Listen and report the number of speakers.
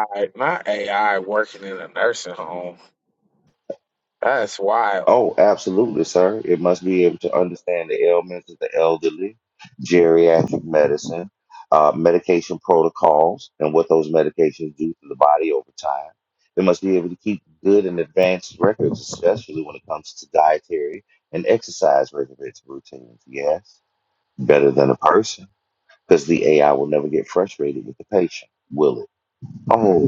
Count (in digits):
2